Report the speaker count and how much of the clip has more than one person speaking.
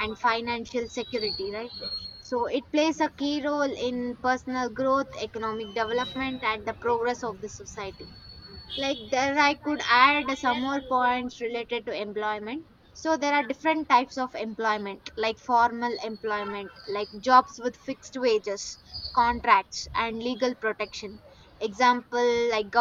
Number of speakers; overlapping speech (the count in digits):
1, no overlap